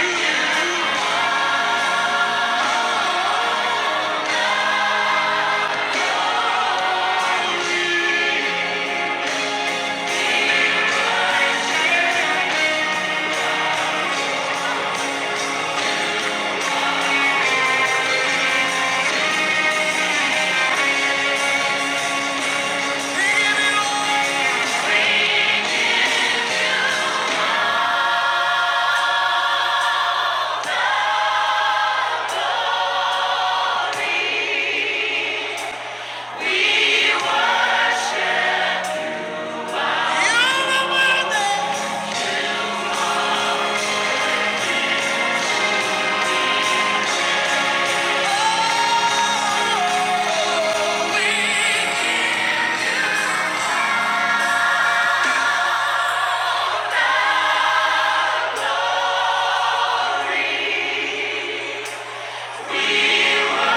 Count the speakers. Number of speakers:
zero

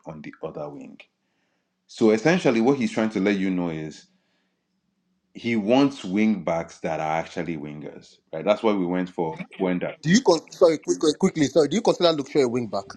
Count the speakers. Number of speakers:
two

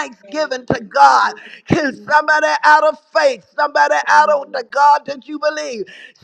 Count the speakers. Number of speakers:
one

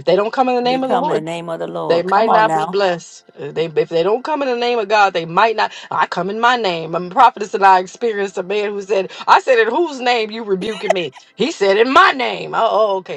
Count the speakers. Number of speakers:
two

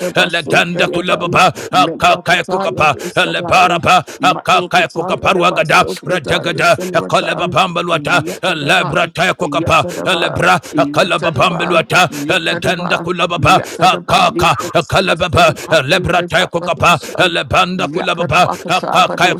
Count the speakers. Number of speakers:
two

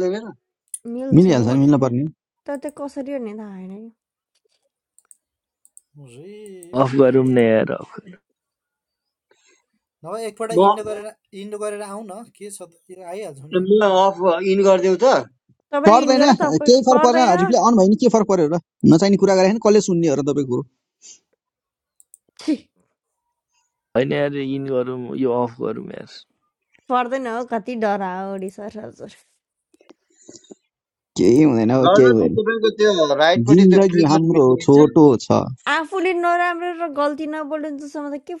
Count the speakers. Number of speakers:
five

